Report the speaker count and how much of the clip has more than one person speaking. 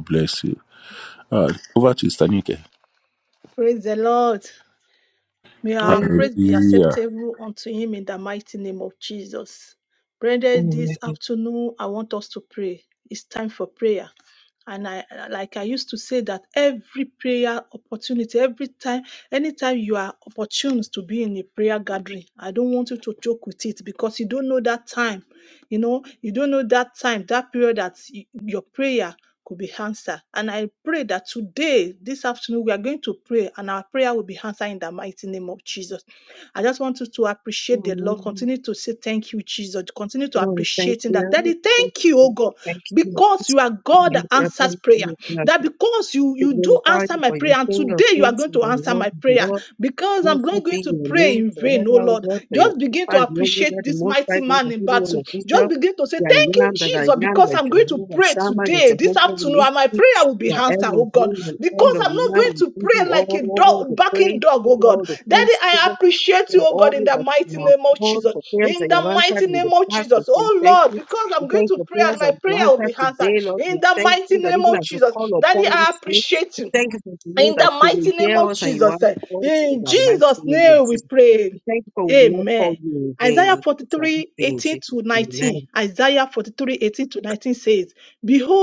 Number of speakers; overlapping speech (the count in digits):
3, about 42%